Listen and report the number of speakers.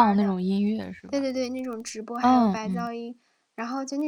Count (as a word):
two